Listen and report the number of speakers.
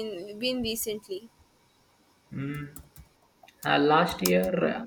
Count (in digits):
2